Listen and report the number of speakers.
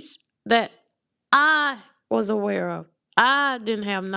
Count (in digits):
1